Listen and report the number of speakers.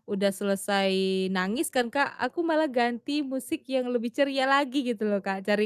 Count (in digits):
1